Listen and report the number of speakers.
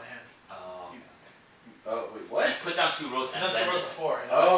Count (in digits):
3